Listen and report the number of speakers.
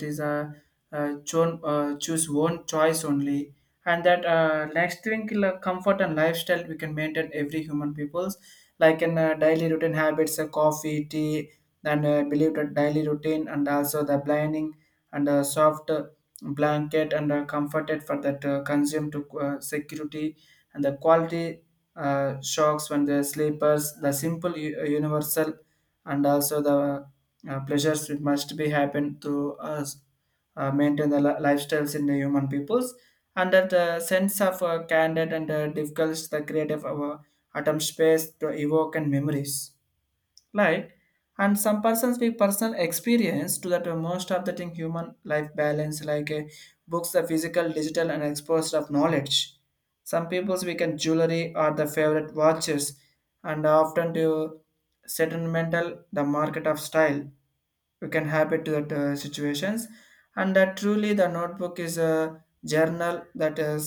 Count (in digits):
1